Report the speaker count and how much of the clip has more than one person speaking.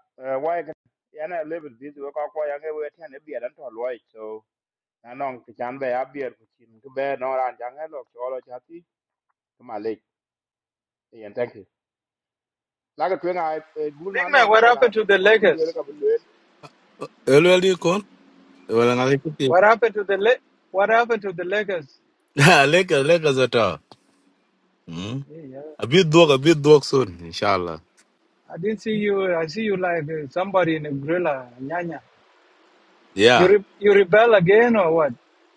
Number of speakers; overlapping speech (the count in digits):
3, about 4%